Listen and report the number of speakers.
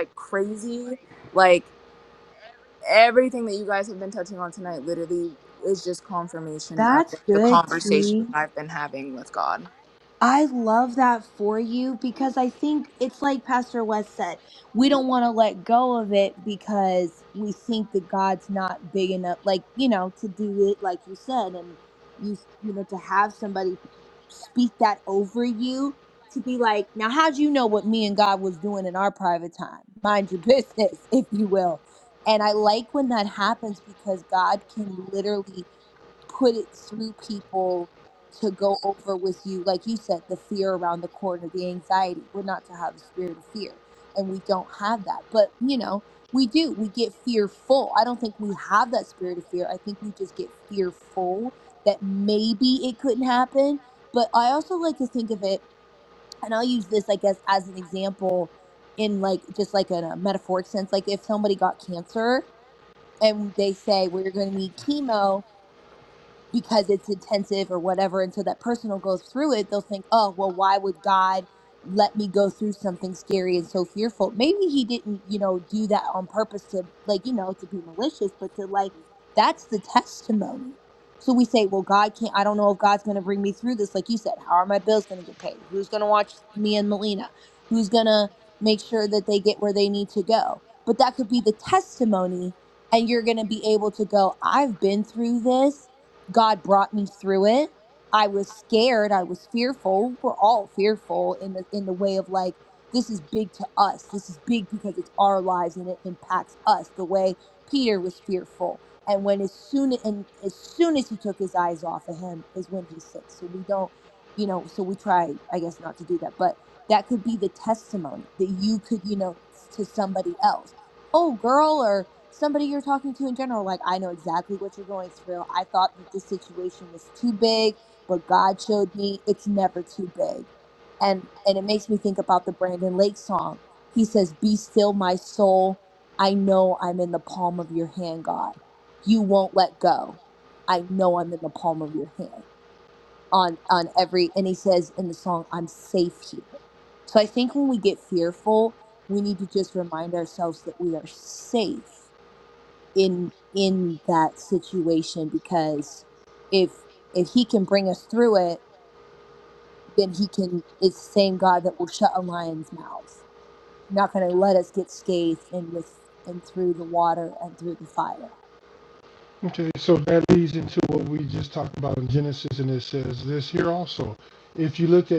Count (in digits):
3